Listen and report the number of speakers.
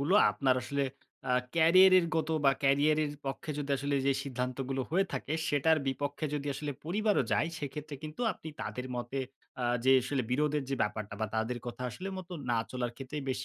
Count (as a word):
one